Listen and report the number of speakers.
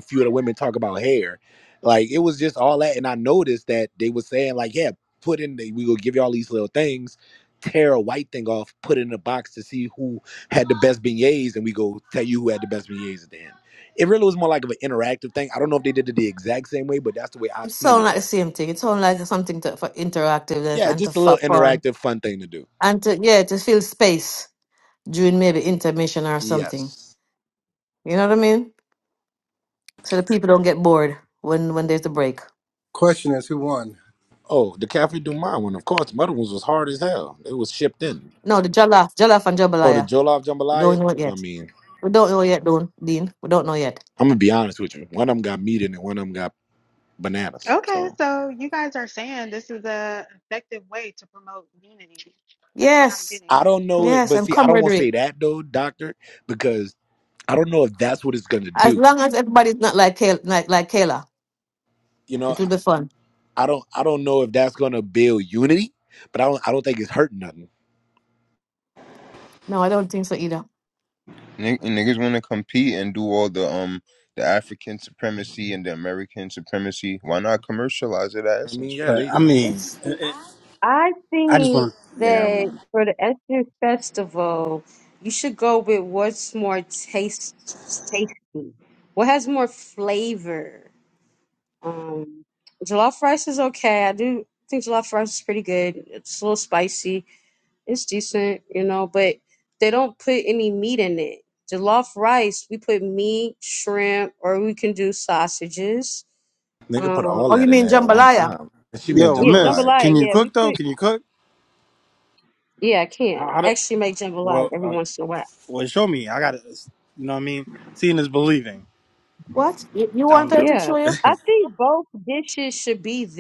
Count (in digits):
7